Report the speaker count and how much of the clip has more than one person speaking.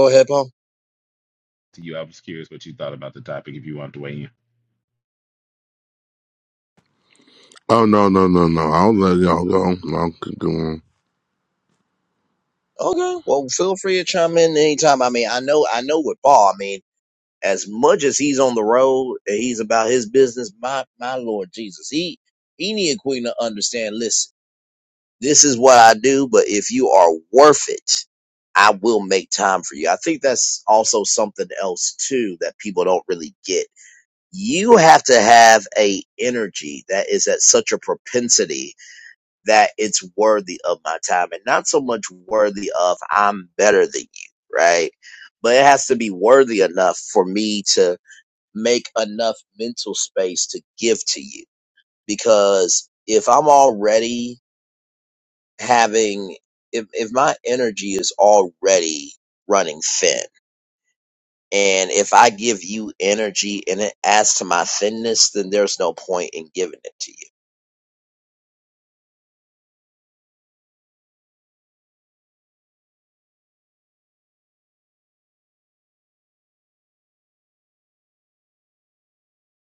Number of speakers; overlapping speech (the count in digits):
3, no overlap